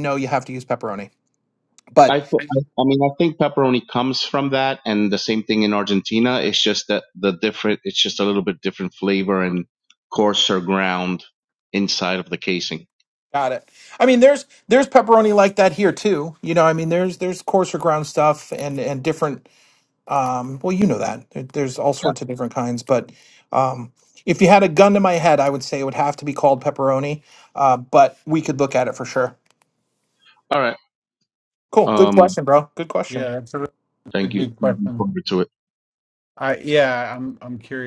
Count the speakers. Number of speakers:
three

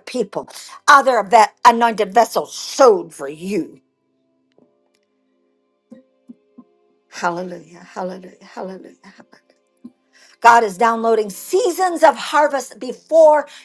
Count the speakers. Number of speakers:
one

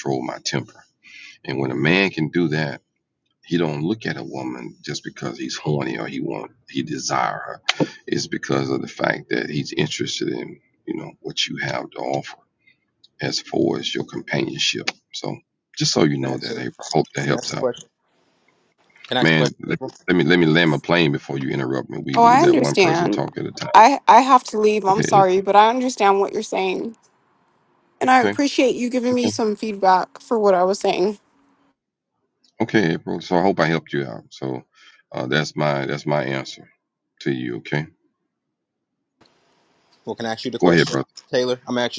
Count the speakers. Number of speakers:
three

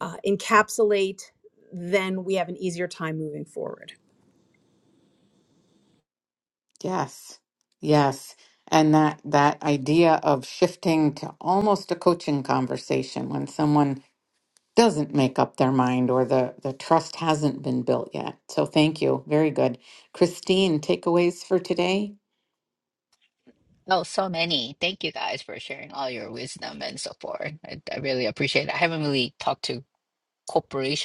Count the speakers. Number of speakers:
three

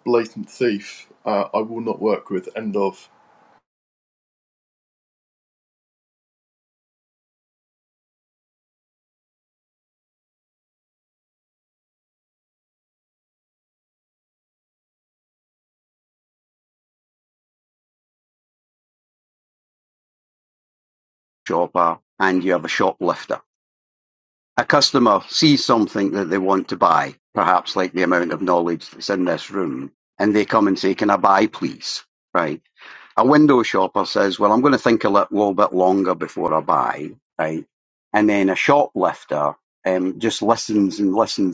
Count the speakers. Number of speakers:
two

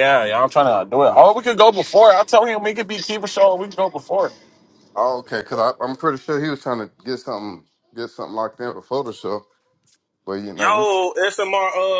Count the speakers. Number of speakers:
three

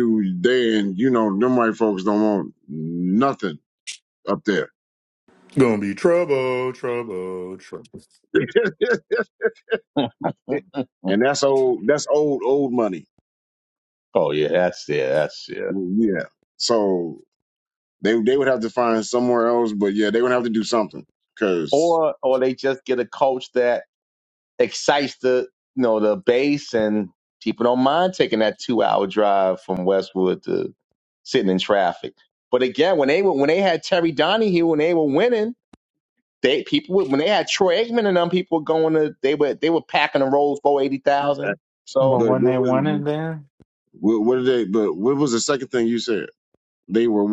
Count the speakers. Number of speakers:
four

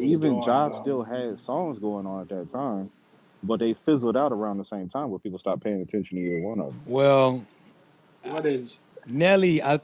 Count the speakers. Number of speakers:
three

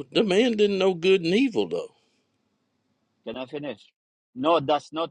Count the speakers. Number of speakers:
two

